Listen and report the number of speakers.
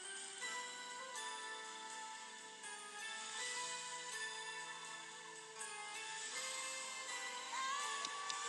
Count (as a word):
zero